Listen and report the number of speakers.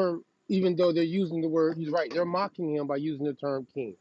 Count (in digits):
1